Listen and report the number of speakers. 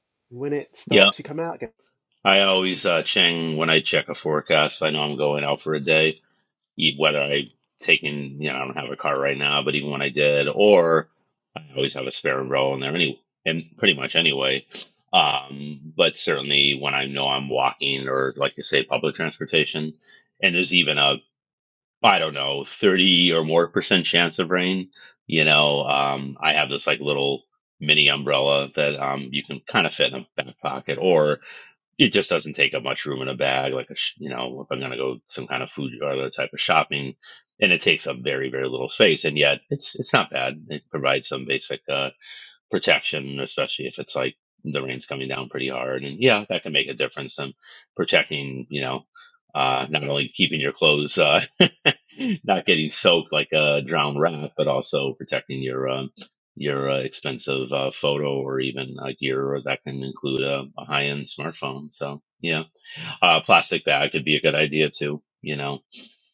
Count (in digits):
2